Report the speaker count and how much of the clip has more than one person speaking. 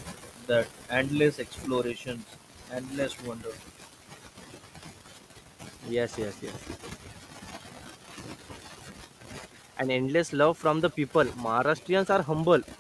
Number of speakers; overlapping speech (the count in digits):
2, no overlap